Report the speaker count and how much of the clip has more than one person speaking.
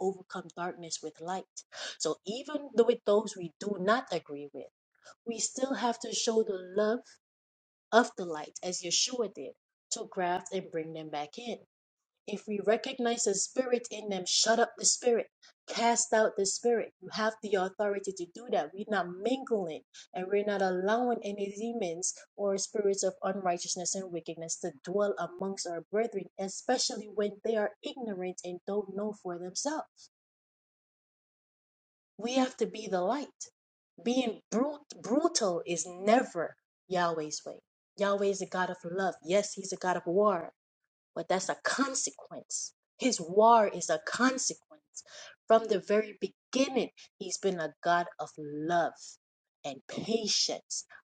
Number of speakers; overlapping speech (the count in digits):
1, no overlap